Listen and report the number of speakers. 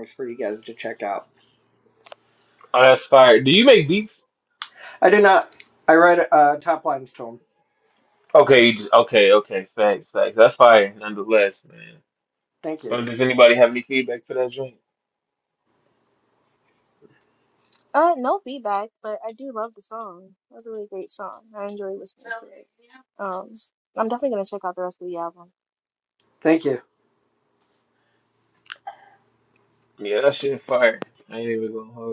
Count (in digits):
3